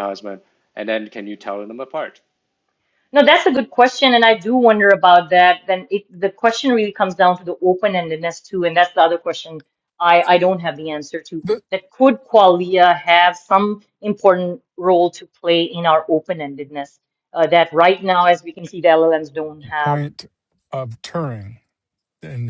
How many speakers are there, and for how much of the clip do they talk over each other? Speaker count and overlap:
three, about 1%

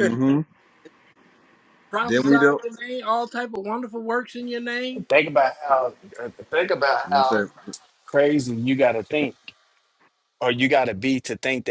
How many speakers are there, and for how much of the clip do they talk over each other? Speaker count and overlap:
three, about 8%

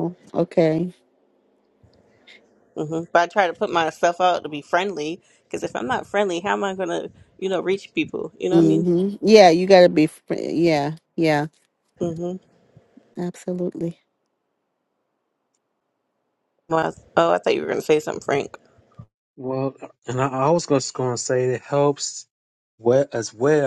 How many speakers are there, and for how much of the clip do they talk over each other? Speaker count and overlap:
three, about 1%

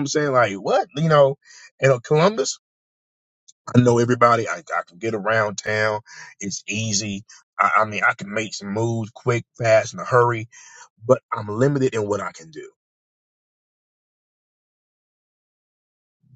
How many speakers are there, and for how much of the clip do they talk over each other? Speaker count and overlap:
one, no overlap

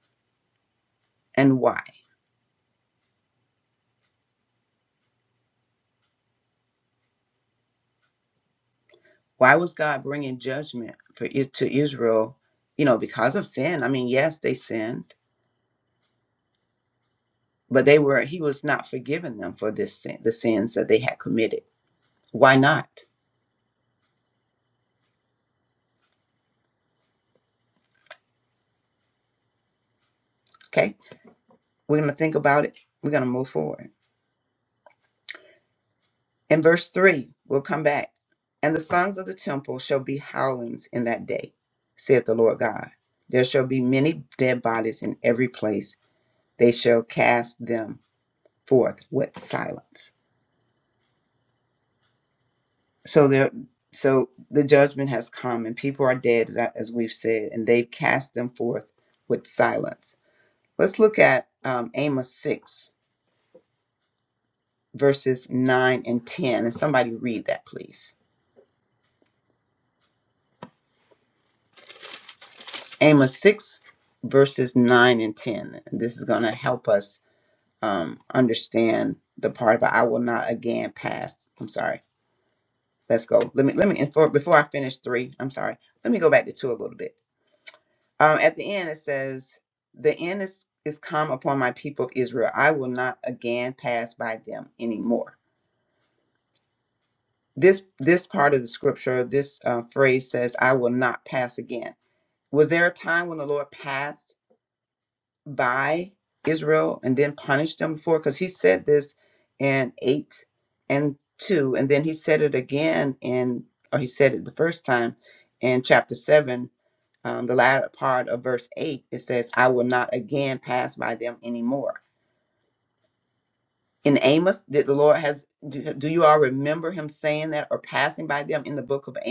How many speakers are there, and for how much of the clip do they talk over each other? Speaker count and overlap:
one, no overlap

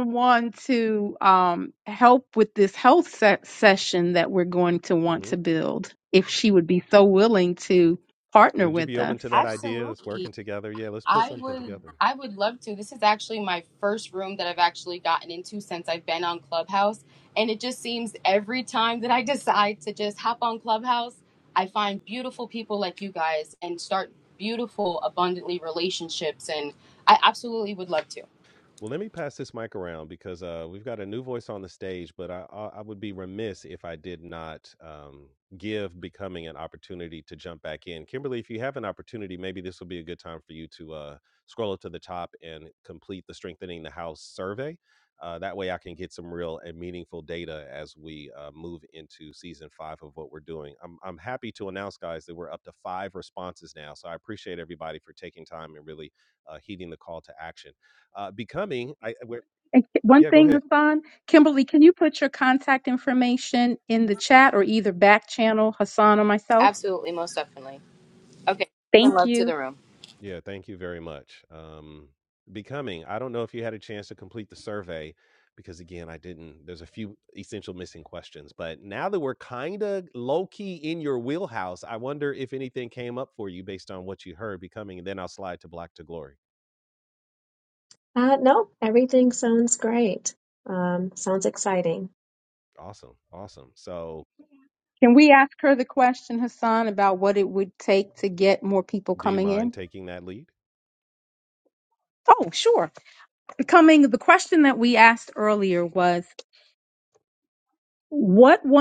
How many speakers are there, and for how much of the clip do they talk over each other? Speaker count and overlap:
four, about 4%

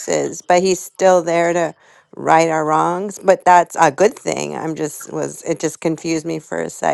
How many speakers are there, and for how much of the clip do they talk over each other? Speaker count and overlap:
one, no overlap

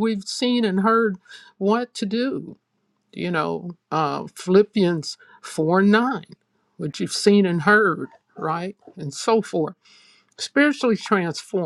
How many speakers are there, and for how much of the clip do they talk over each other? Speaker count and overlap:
one, no overlap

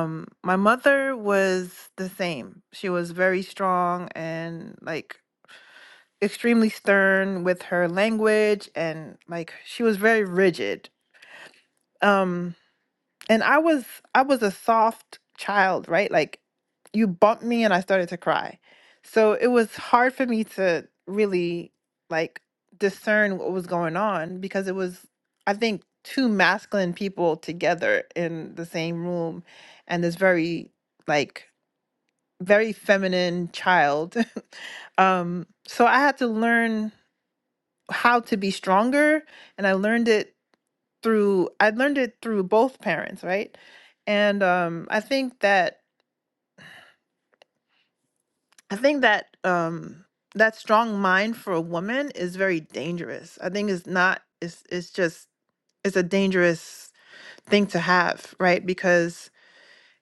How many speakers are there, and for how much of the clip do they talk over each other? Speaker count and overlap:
one, no overlap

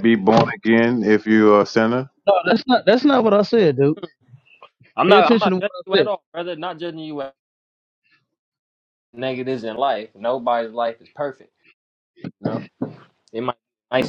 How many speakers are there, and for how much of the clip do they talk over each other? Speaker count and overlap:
three, about 7%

